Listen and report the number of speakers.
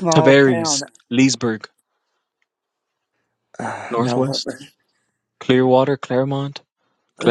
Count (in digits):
2